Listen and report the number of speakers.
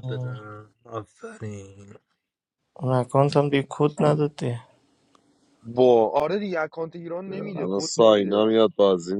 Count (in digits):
4